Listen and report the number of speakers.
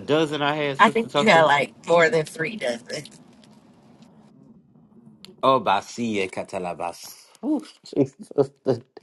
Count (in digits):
2